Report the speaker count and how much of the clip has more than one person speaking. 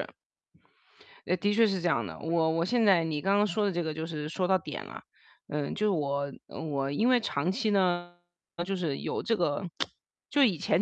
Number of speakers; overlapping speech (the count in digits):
1, no overlap